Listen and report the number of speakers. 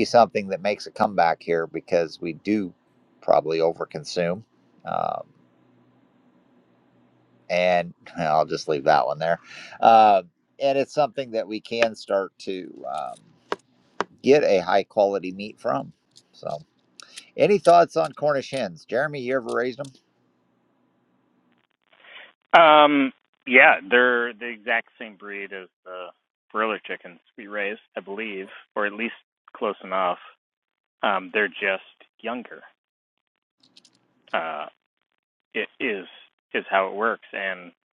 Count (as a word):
two